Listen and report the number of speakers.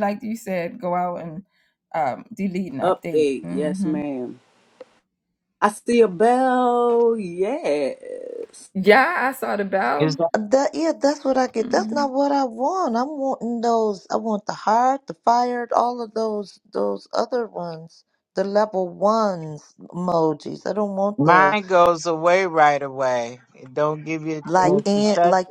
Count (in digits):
4